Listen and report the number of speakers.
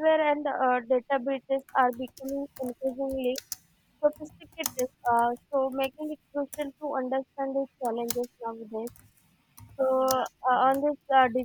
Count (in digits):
1